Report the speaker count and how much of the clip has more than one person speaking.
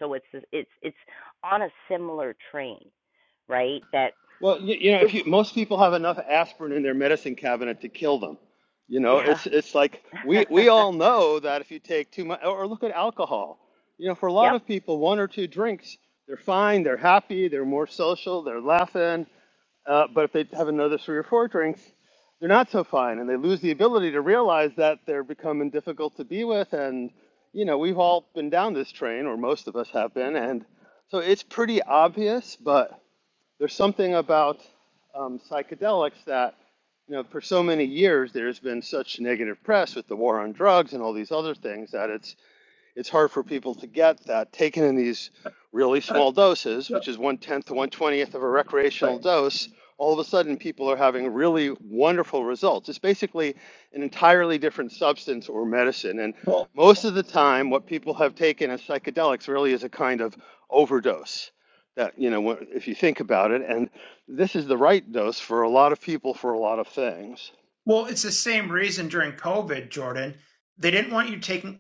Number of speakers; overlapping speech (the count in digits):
3, about 2%